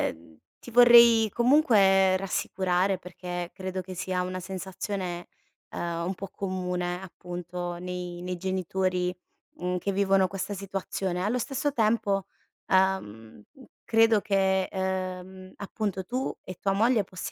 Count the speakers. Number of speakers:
1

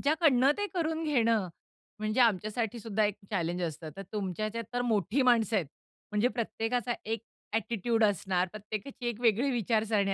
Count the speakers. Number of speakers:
1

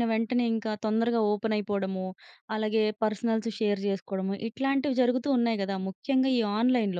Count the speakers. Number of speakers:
1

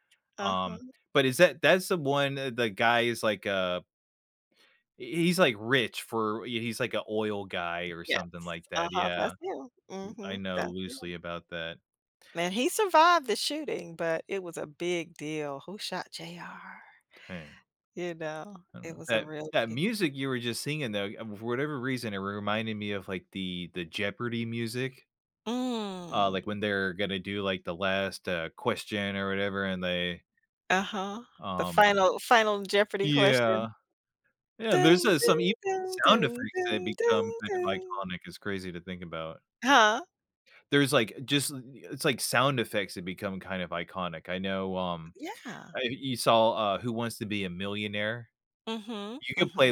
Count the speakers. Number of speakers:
2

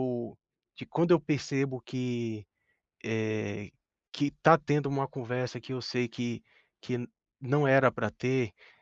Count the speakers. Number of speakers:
1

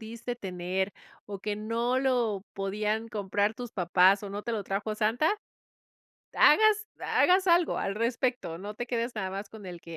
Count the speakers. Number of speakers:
1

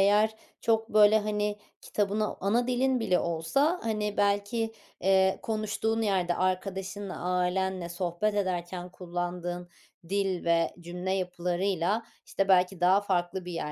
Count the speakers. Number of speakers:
1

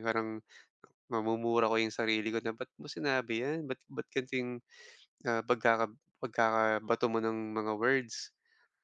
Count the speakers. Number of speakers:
1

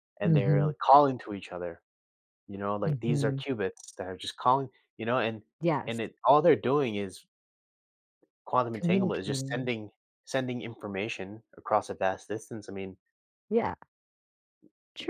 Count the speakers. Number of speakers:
2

